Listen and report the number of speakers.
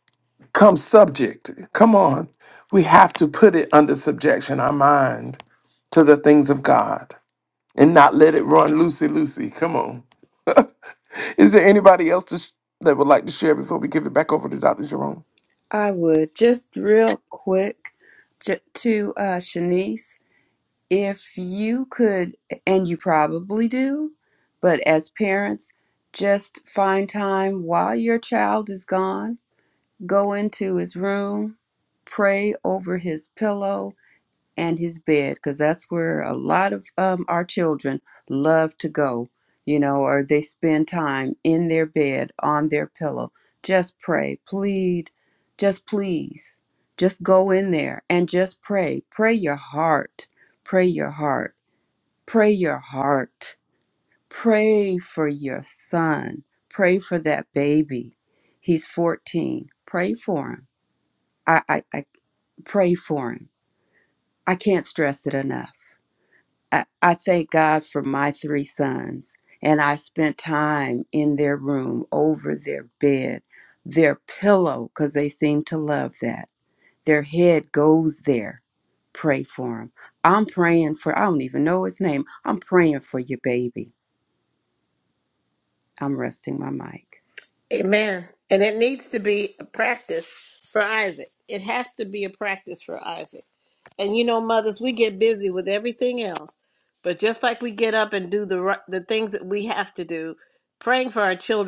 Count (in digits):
3